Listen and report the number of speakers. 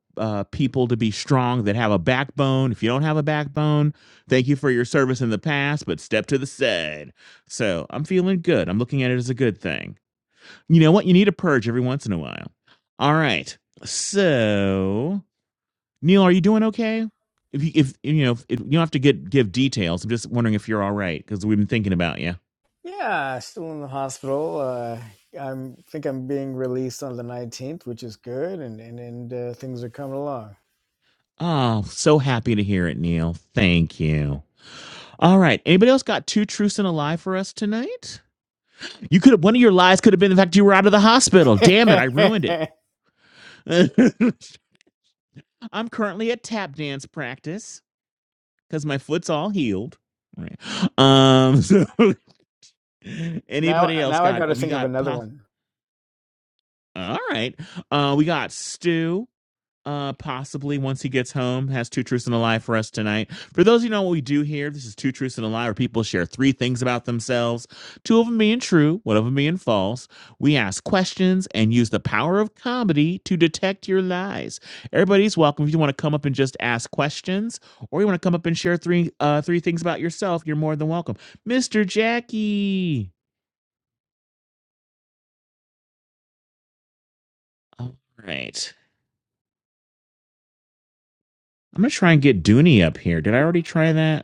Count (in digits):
2